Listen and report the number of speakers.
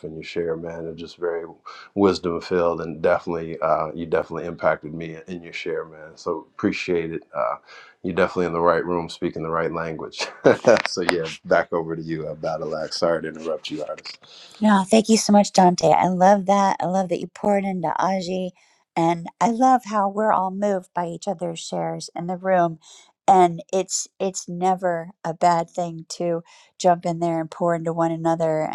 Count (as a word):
two